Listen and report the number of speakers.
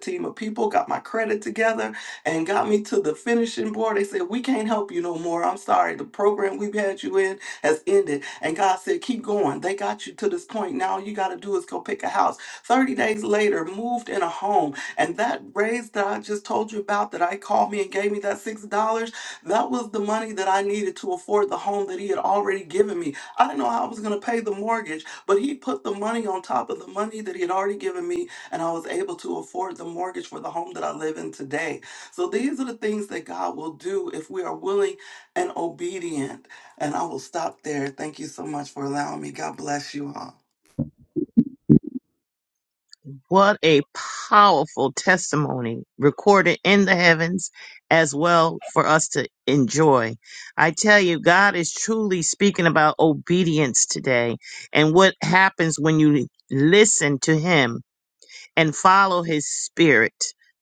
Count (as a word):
two